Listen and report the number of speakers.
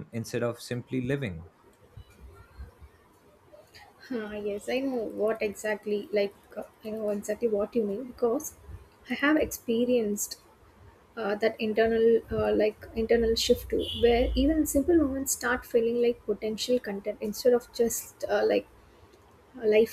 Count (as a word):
two